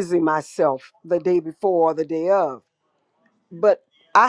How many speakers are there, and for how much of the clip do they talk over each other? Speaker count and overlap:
1, no overlap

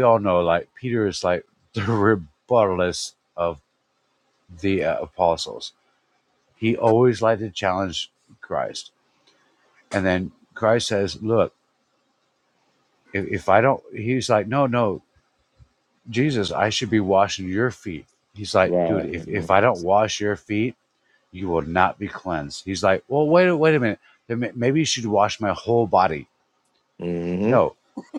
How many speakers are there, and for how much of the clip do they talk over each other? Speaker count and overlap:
2, about 2%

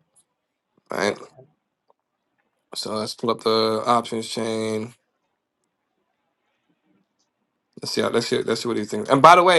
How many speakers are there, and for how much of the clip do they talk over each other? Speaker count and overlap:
1, no overlap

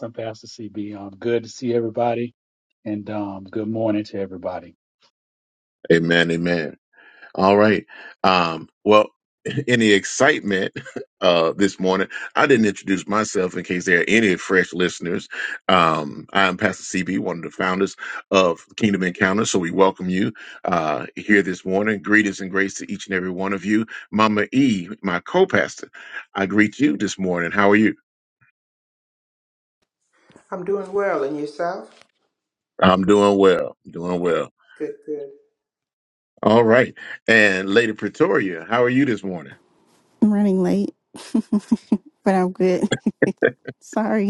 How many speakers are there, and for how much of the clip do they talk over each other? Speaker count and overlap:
4, no overlap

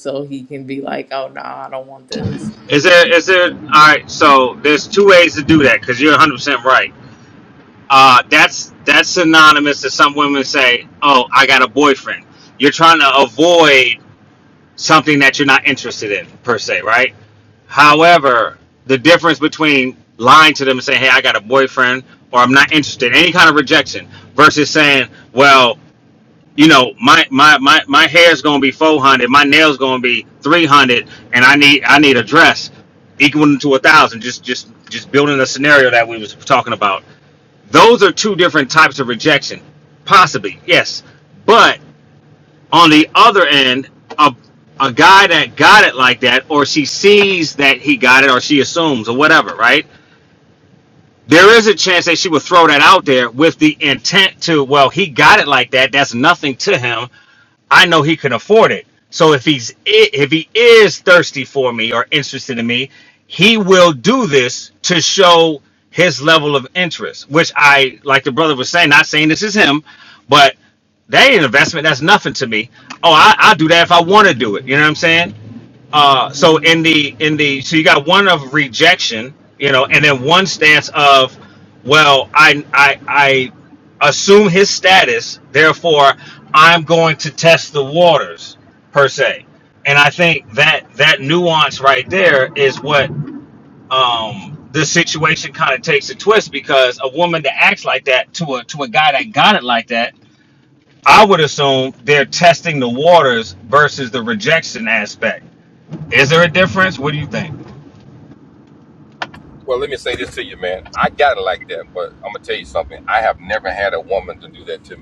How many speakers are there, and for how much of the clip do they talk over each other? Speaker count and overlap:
3, no overlap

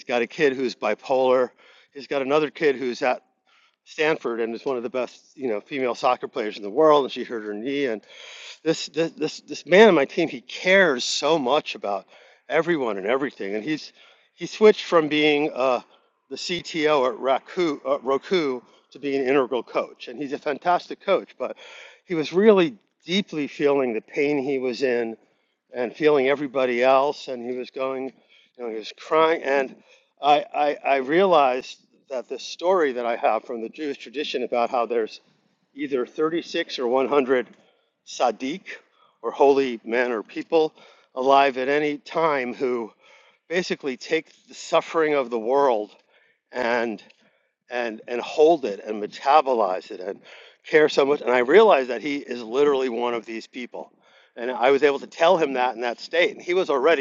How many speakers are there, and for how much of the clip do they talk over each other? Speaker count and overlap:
1, no overlap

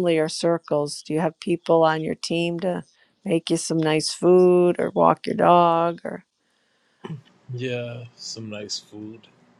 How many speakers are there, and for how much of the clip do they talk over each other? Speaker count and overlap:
2, no overlap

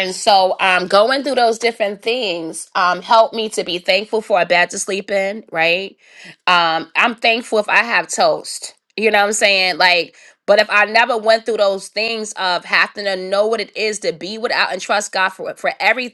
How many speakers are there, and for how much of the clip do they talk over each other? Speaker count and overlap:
1, no overlap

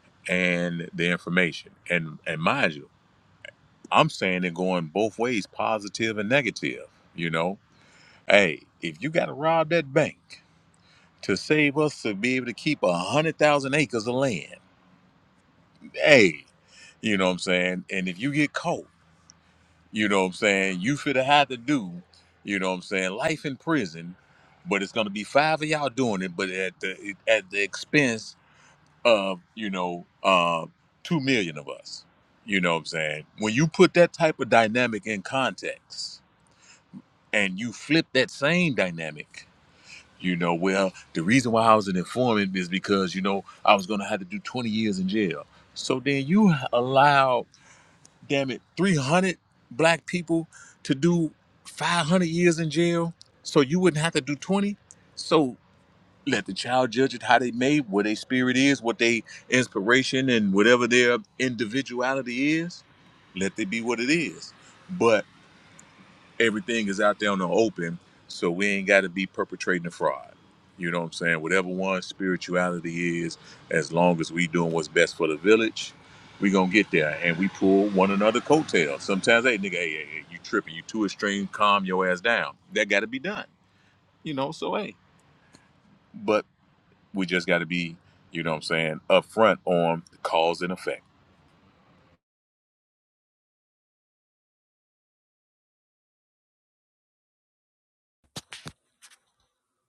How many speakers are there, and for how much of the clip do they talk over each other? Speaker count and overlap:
1, no overlap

